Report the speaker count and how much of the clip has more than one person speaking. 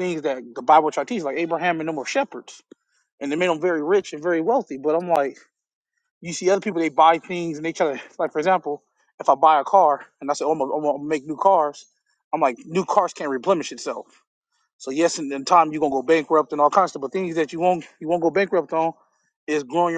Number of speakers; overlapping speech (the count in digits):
1, no overlap